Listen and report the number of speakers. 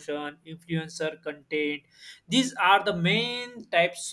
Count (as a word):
one